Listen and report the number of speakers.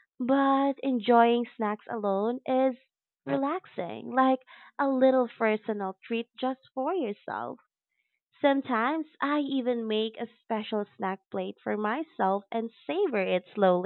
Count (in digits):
1